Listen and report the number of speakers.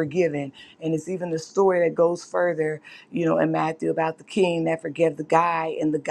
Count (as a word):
one